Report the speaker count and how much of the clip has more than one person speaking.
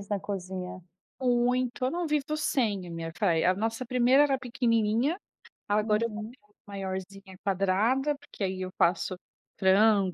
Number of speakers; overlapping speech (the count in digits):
2, about 5%